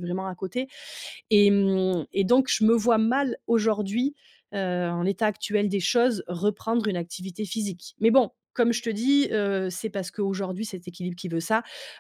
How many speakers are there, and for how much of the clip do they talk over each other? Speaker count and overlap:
one, no overlap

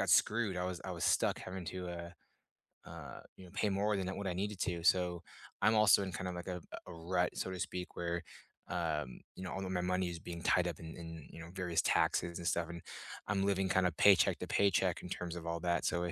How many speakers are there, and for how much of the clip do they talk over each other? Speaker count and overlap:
one, no overlap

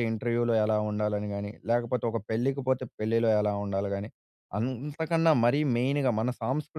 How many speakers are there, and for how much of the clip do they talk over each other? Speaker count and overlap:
one, no overlap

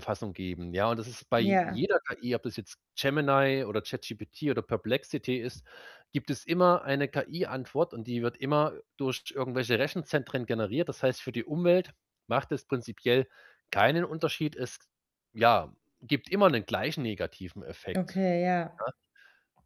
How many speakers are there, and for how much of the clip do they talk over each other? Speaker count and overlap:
two, about 2%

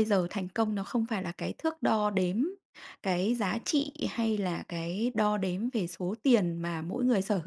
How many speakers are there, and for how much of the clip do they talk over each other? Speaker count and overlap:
one, no overlap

